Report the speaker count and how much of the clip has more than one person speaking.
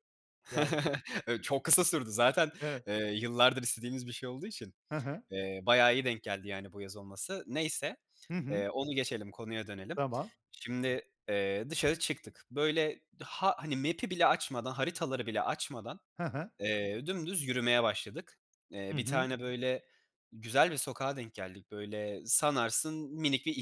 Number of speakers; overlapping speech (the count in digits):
2, about 2%